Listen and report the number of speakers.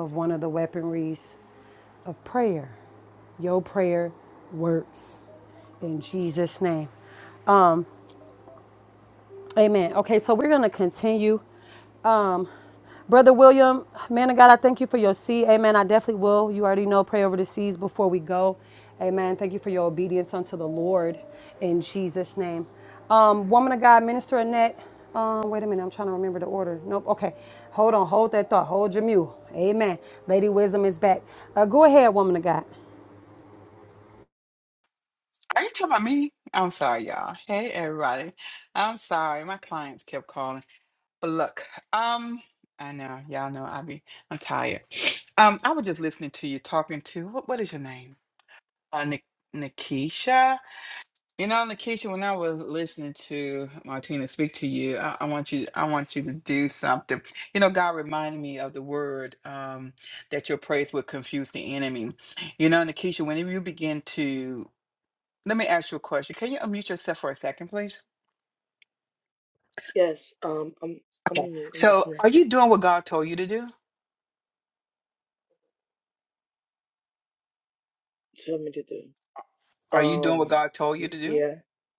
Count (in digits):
3